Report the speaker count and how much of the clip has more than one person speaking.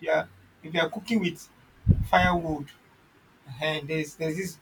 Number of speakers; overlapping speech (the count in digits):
1, no overlap